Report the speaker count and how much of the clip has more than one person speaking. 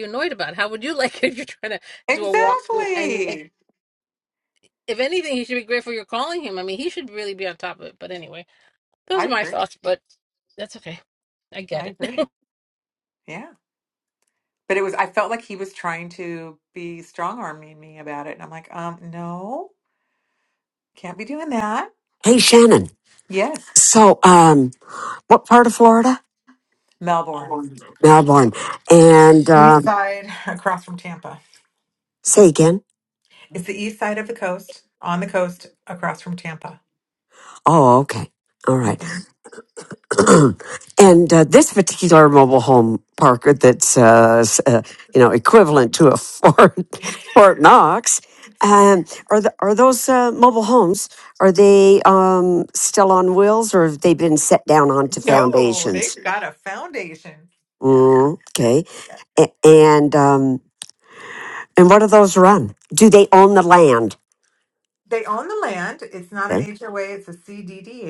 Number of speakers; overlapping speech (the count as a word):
three, about 6%